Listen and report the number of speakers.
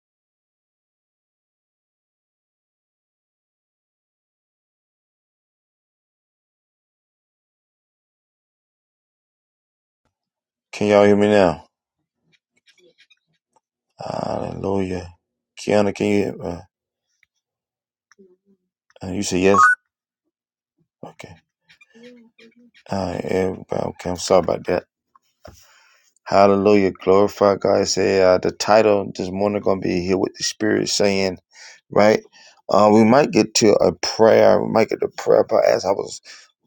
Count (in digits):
1